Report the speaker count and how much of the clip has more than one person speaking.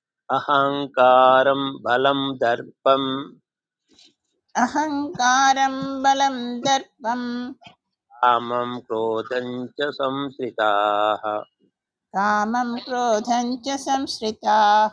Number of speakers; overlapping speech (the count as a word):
two, no overlap